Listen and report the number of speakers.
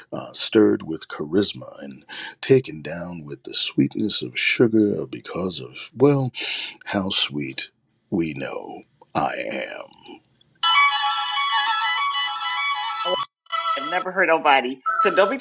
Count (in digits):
2